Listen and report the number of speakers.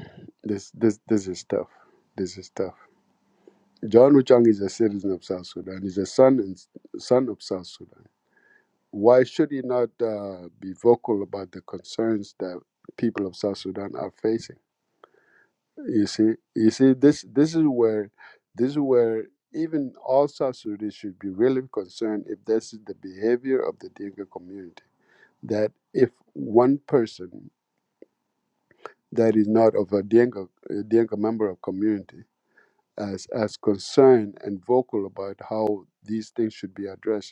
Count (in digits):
1